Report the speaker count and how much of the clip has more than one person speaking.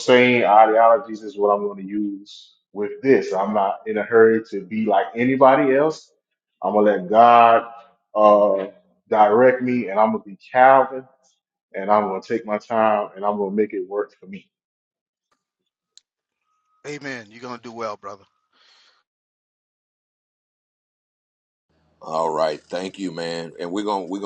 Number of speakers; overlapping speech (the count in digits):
3, no overlap